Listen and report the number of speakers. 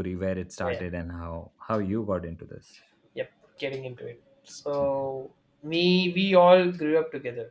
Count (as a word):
two